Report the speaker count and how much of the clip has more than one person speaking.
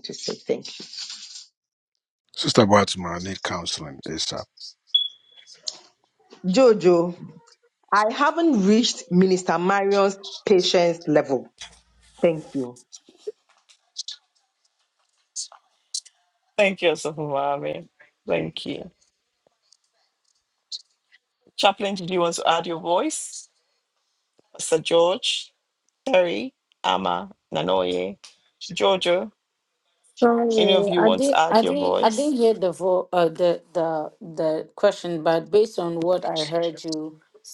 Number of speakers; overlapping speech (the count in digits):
4, about 4%